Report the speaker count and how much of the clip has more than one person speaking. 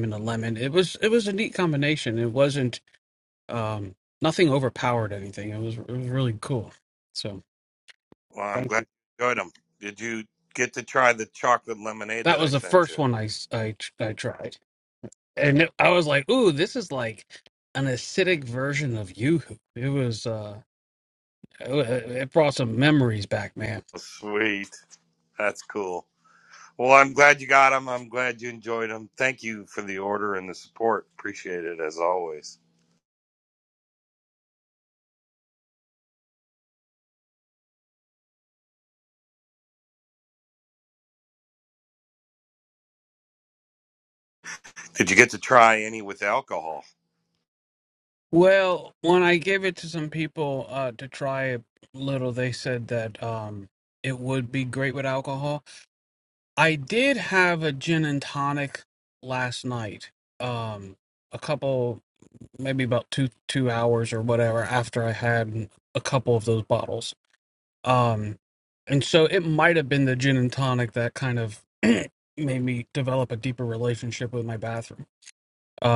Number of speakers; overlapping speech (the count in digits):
2, about 1%